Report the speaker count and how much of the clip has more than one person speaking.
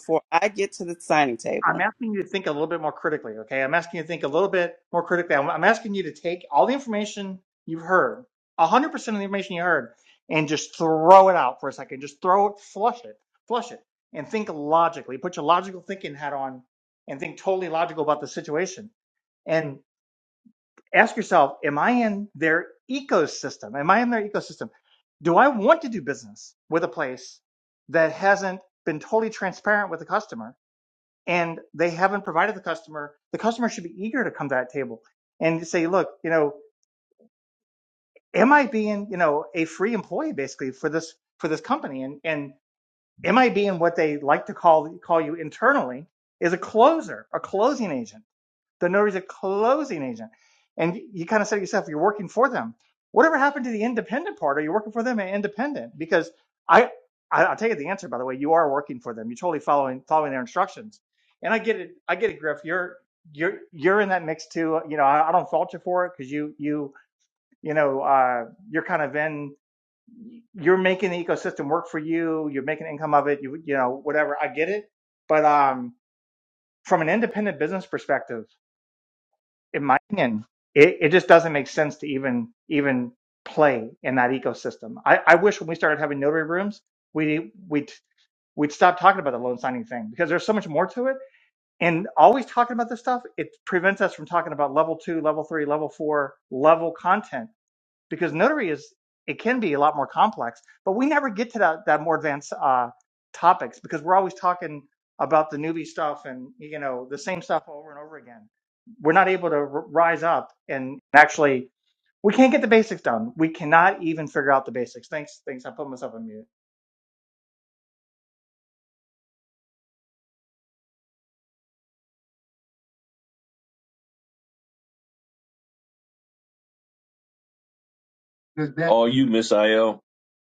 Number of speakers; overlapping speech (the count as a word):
three, under 1%